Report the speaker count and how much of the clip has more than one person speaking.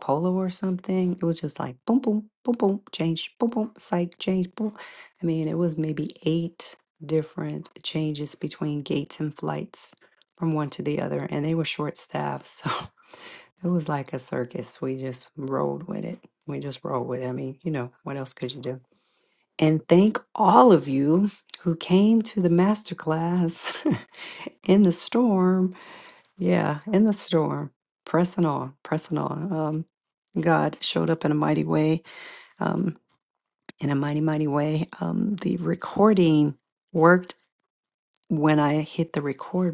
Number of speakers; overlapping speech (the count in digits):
1, no overlap